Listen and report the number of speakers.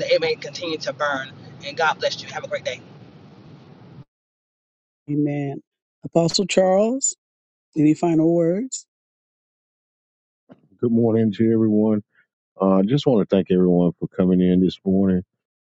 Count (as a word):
three